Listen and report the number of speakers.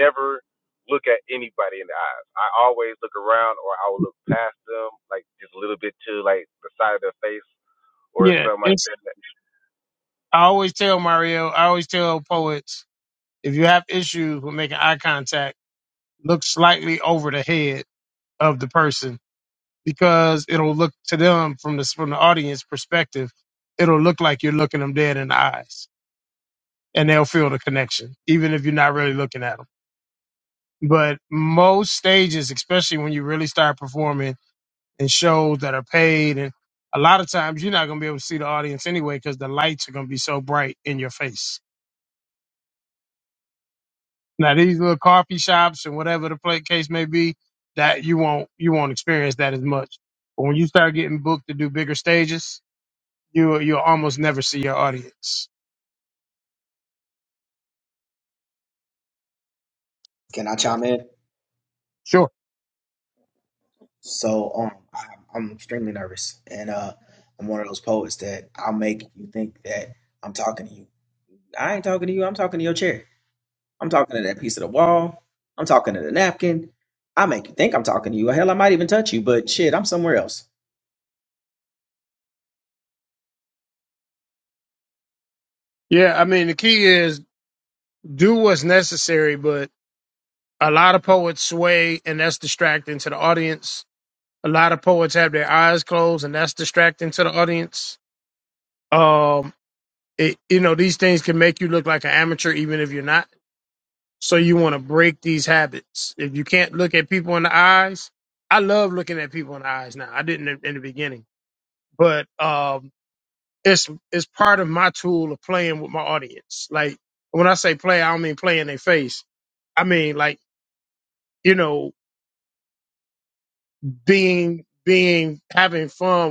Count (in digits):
3